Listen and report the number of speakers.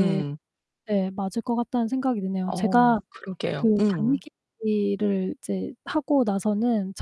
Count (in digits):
2